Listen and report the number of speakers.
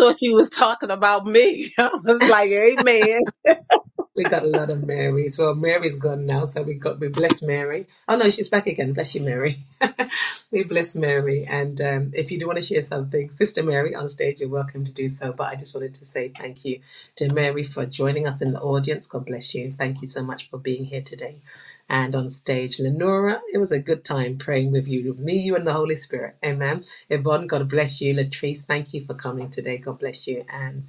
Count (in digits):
2